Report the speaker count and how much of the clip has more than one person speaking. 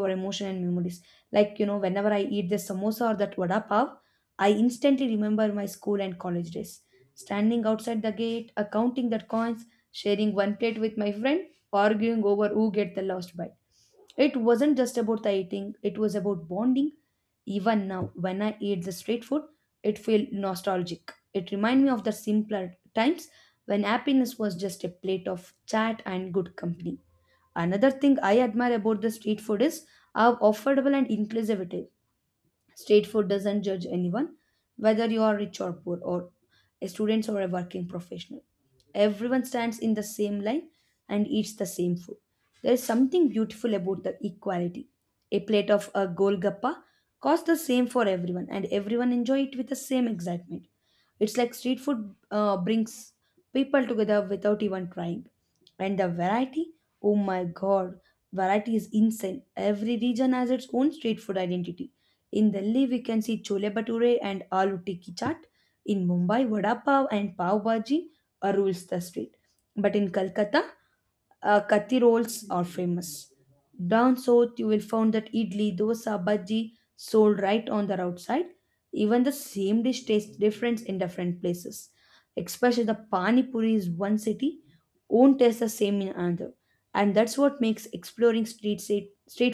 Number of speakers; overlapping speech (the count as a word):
one, no overlap